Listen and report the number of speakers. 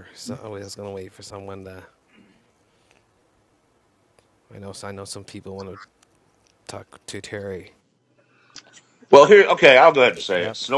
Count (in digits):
2